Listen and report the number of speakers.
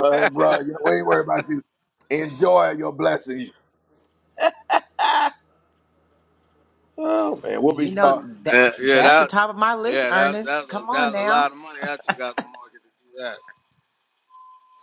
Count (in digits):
3